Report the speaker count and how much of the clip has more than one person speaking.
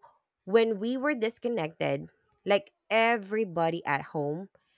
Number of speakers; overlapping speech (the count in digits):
1, no overlap